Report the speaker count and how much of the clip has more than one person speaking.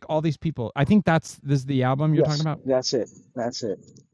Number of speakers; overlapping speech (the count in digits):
2, about 11%